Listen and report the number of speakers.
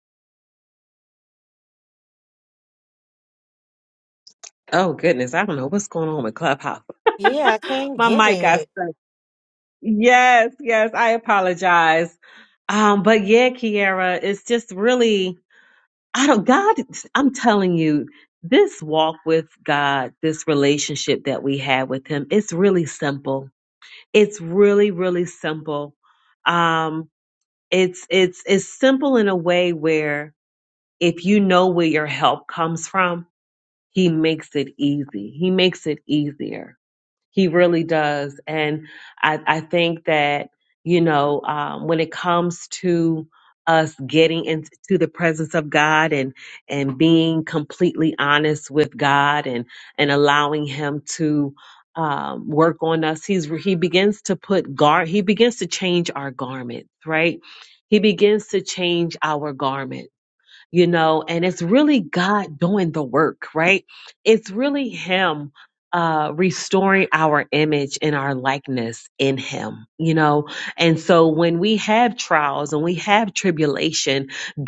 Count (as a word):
two